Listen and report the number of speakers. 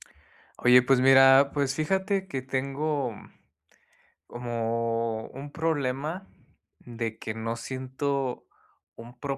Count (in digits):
1